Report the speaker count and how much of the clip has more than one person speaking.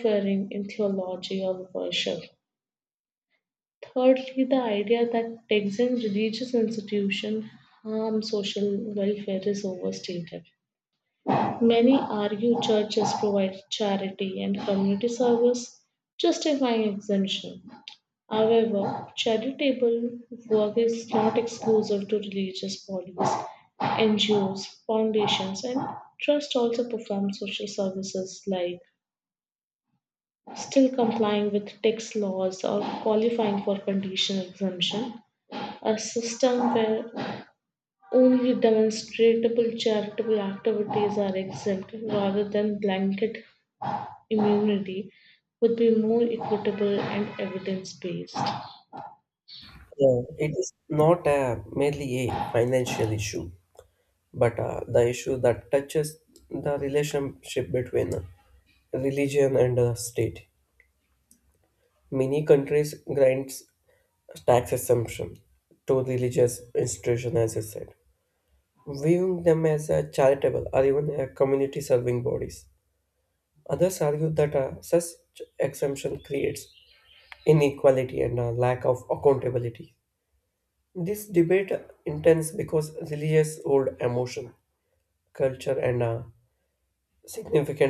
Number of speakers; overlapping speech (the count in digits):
2, no overlap